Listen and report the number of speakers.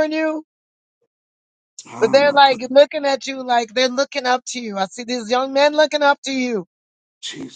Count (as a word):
two